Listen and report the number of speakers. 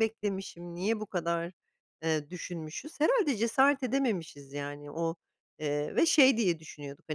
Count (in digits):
1